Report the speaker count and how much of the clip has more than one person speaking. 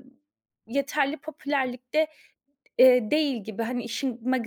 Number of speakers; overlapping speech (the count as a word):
one, no overlap